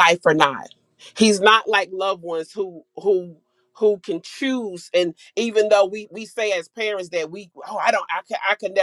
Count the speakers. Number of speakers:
1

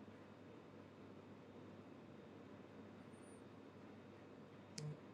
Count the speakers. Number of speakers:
0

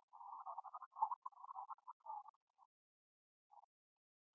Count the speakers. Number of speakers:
0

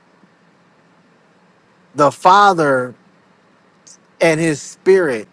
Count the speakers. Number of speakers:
1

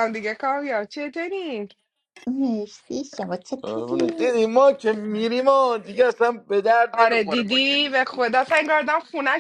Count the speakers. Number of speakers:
3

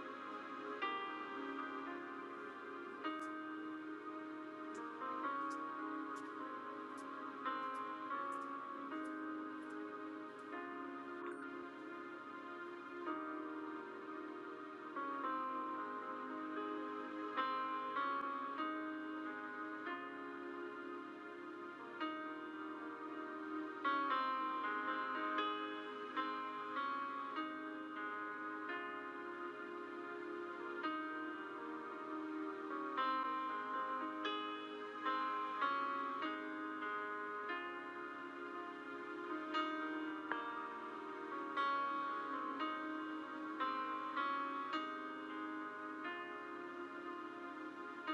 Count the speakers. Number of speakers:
0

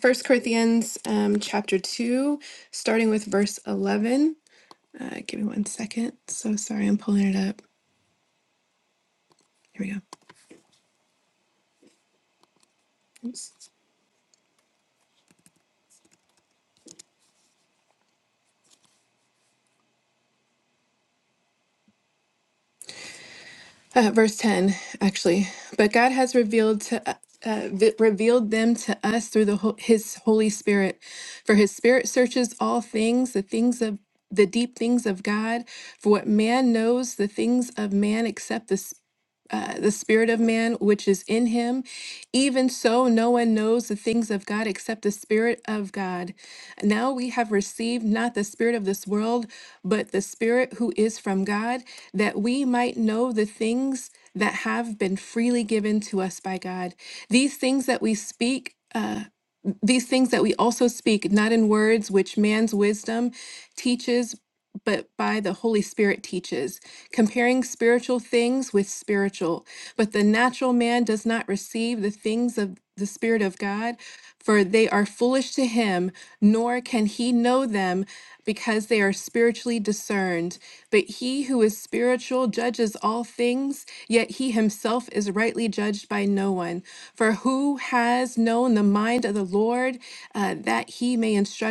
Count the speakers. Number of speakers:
1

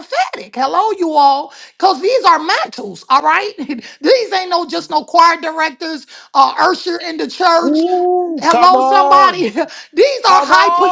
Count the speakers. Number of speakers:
2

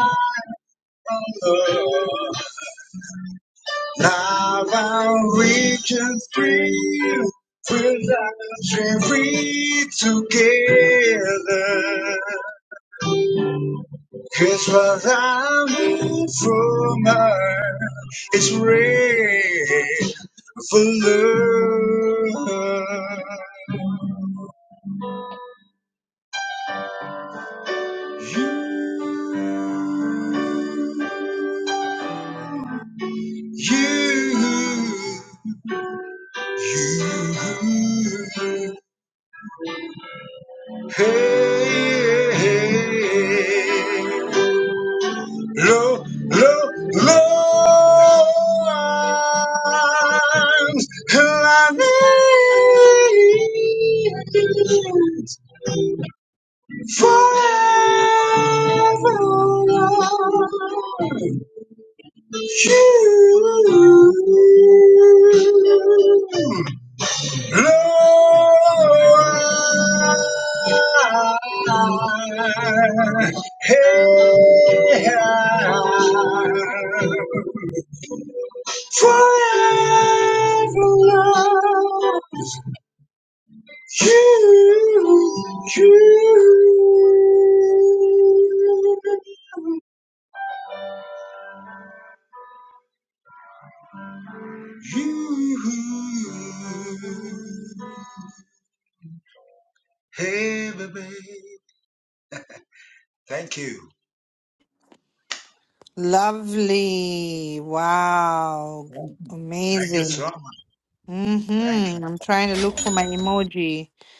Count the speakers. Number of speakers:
2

